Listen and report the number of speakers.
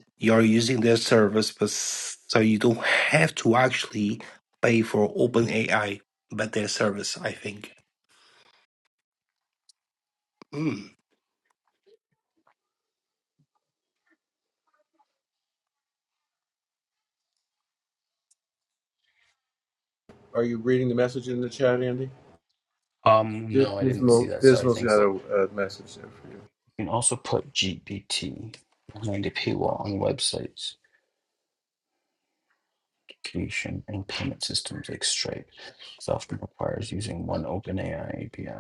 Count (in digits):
3